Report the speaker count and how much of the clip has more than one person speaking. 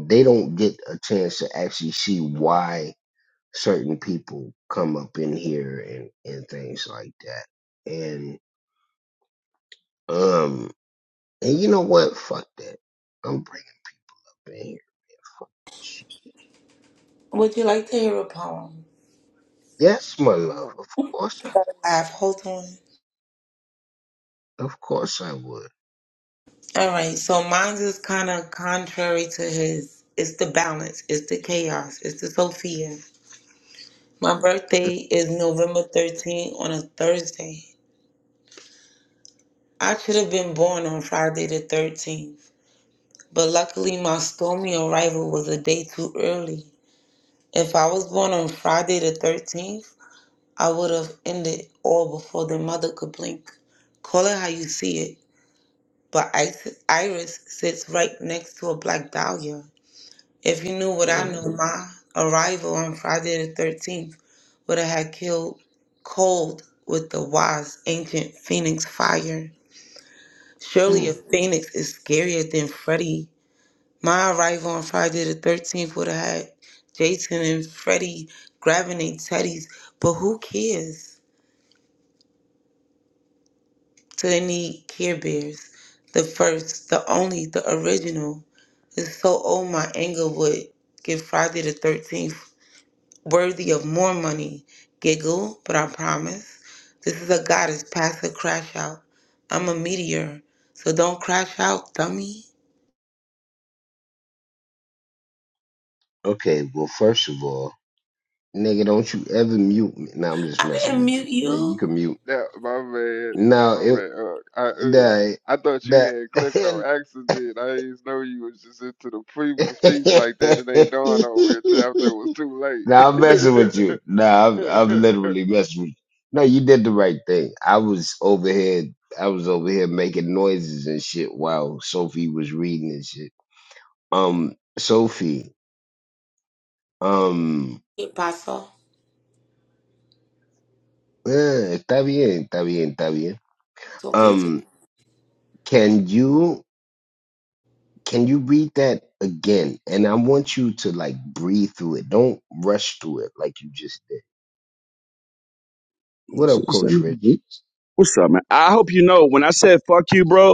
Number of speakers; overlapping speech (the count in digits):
4, about 4%